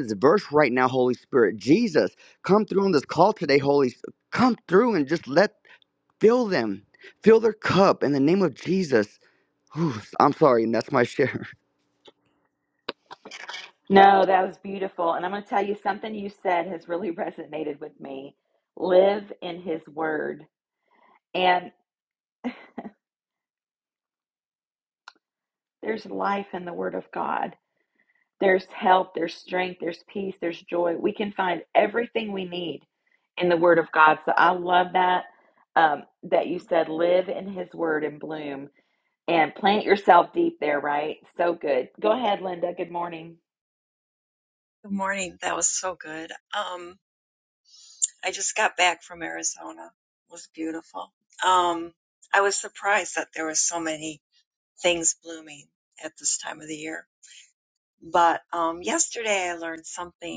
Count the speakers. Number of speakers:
three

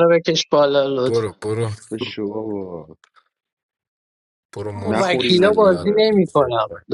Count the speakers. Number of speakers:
three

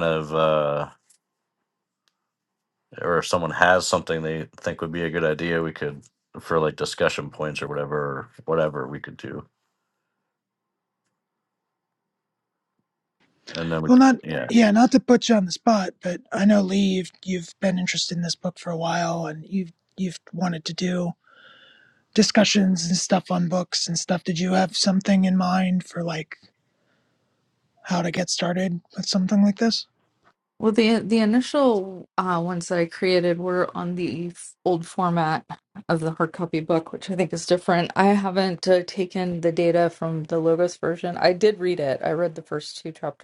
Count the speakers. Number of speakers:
three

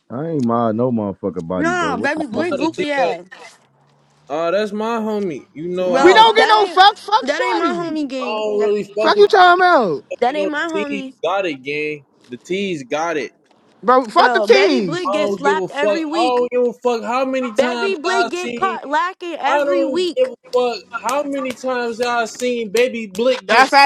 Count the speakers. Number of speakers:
four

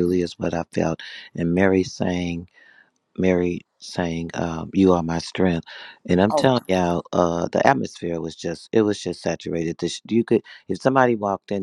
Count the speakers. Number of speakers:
one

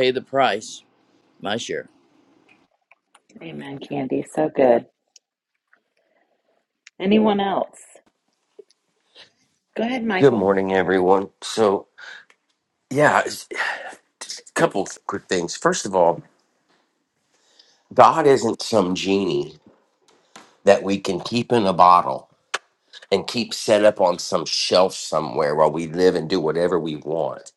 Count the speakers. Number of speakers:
three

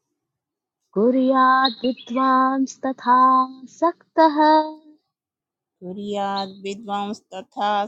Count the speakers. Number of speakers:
two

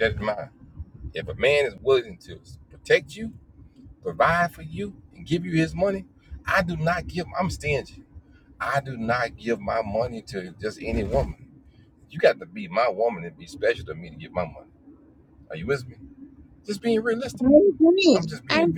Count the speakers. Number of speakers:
two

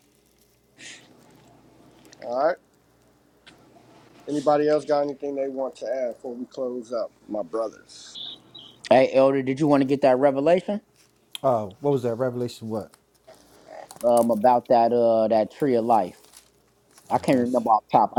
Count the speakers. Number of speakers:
three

